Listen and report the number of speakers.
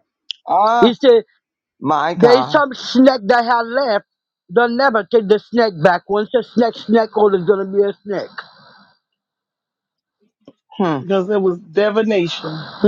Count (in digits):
3